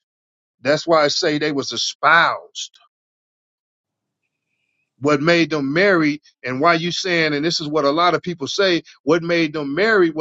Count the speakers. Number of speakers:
1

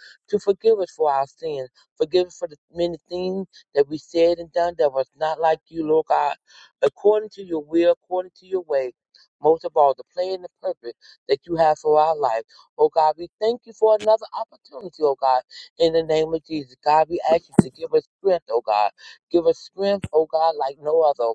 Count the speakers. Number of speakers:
1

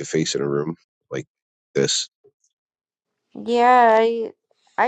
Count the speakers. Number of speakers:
2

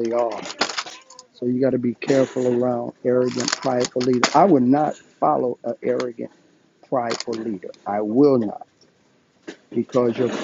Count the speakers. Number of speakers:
1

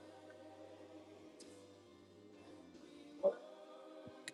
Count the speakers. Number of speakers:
0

